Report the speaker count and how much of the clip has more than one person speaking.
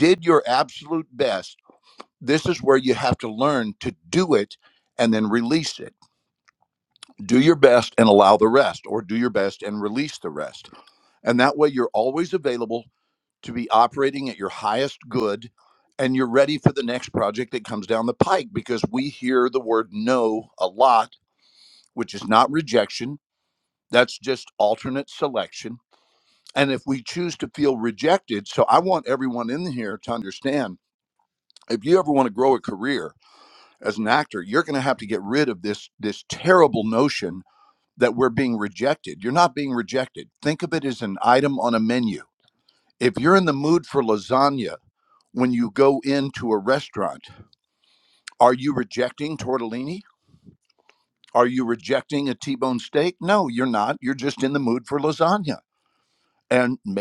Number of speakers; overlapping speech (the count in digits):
1, no overlap